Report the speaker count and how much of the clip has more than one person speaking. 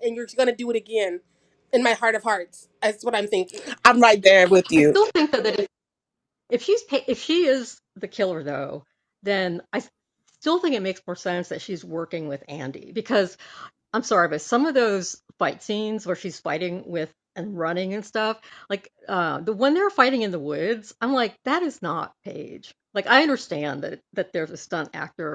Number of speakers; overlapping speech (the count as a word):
three, about 1%